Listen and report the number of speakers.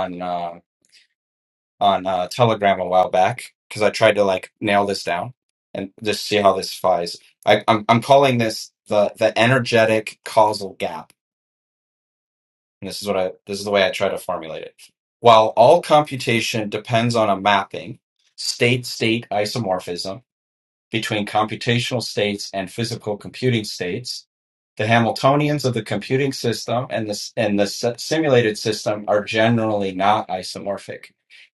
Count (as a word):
one